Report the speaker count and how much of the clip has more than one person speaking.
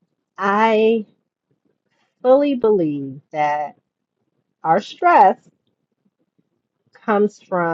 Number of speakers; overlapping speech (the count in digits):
1, no overlap